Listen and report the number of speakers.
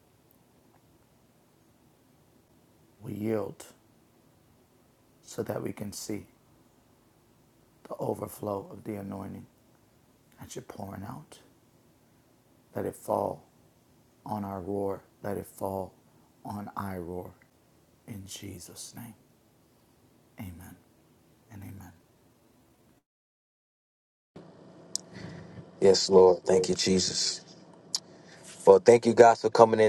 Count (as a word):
two